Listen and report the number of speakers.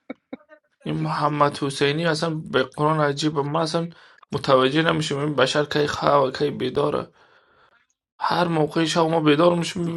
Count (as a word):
one